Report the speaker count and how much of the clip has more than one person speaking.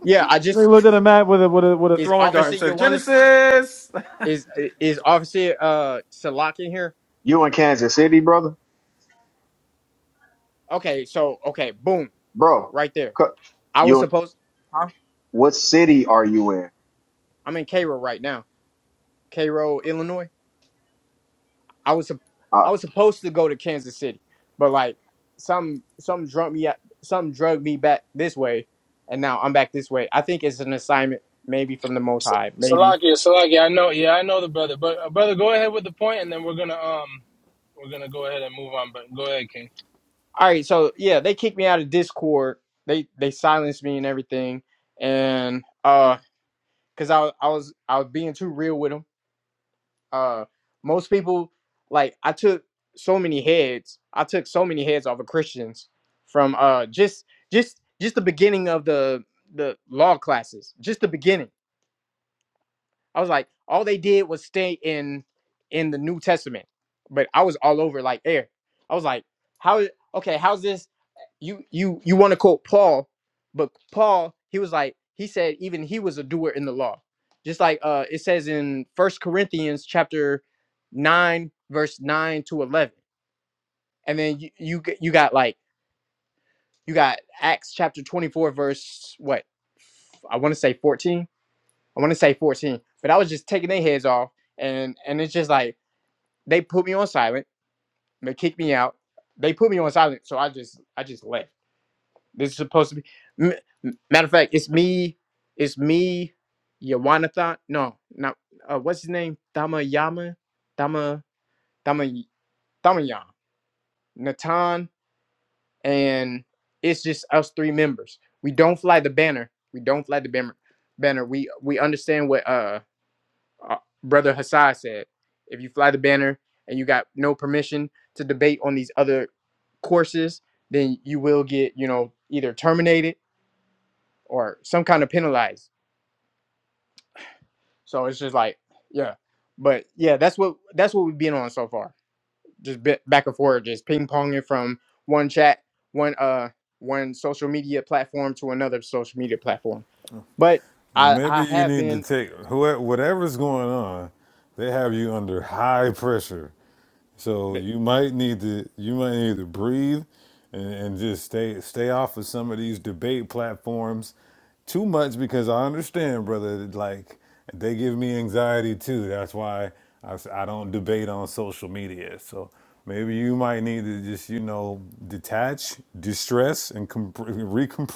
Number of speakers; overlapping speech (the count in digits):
5, about 2%